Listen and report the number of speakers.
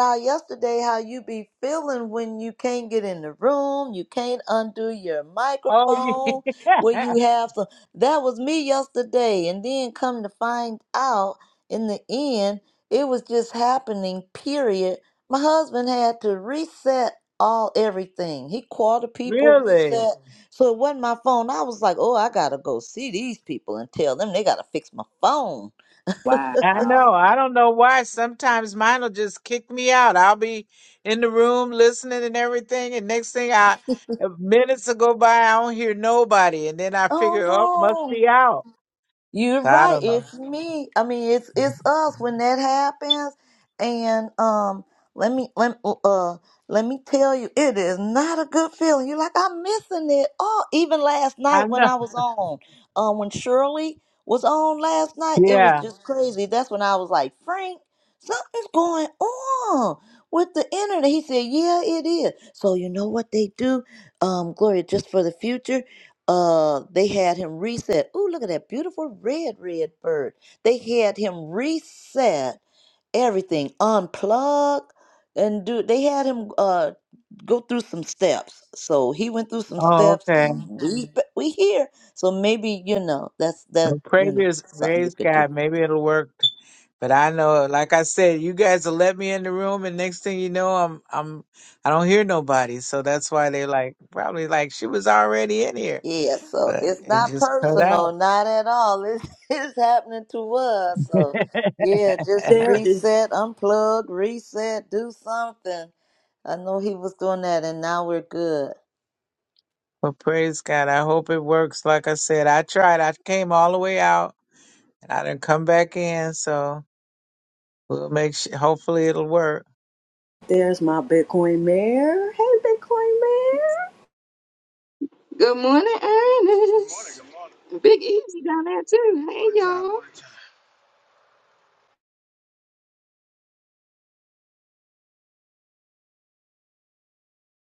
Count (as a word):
five